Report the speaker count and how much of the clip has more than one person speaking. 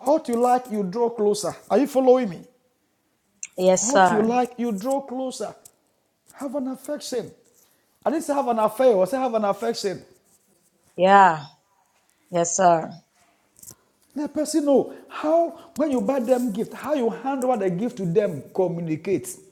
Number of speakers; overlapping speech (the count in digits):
2, about 3%